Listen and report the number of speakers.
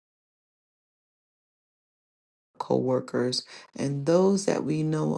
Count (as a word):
one